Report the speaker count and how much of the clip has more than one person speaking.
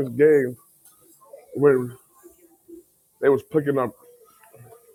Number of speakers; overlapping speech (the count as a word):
one, no overlap